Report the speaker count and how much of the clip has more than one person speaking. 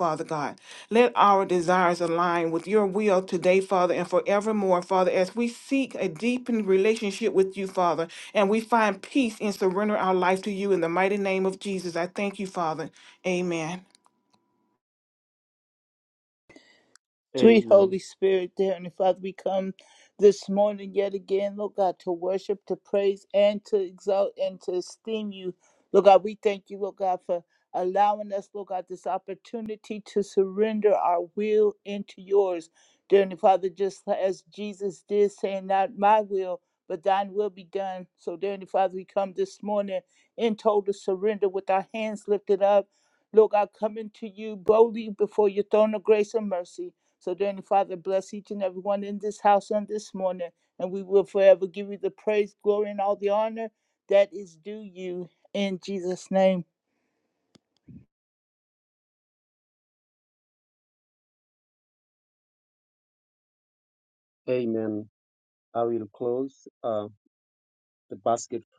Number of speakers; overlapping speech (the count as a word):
three, about 1%